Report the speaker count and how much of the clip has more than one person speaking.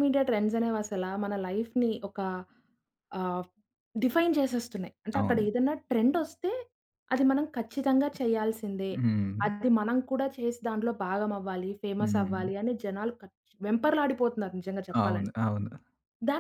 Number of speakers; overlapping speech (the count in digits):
2, about 7%